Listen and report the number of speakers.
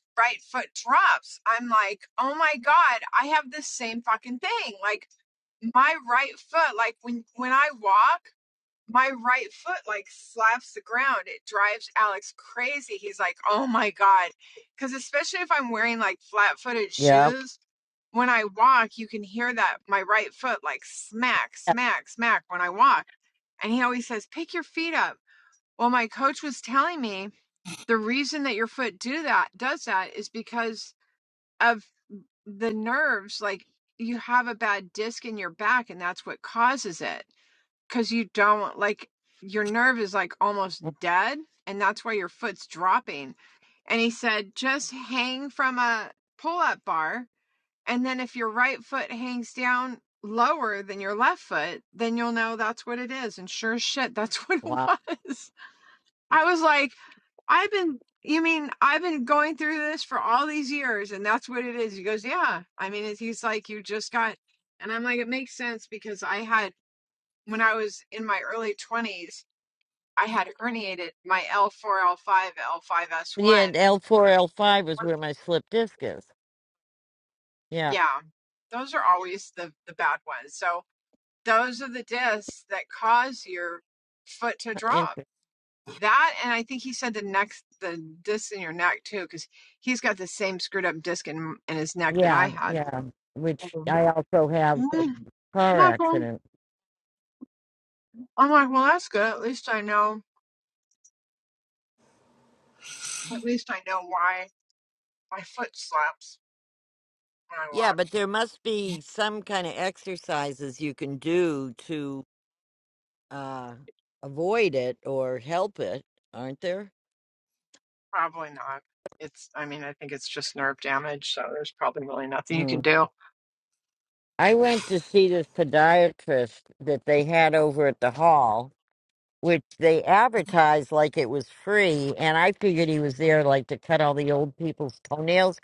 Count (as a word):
two